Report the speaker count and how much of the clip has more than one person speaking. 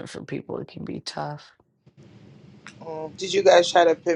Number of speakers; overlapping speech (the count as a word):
two, no overlap